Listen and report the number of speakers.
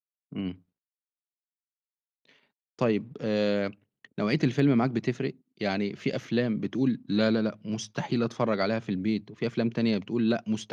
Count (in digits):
1